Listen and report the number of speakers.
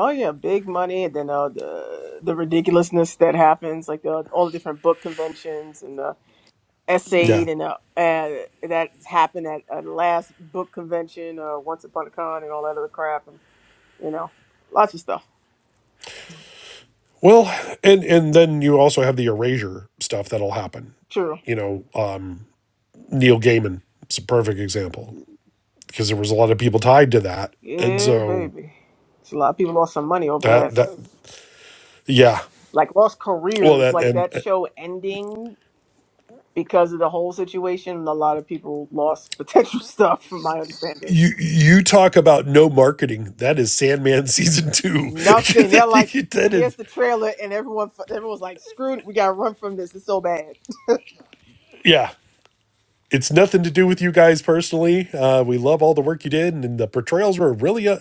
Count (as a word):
two